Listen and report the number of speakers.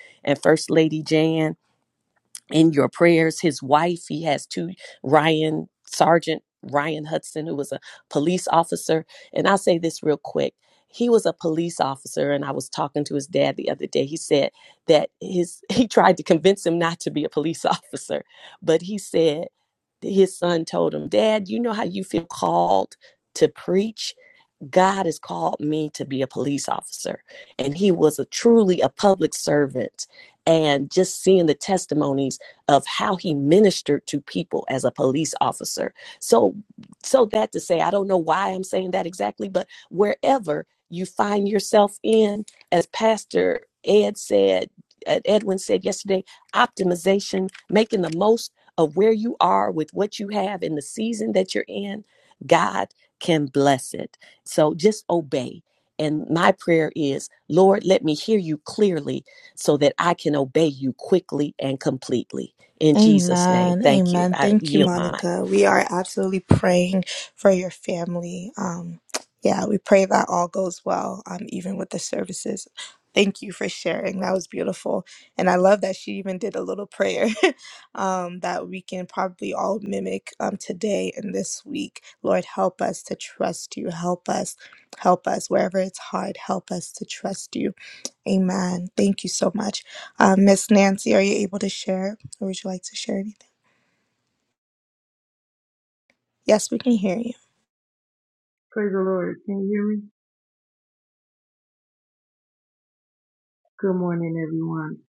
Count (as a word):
three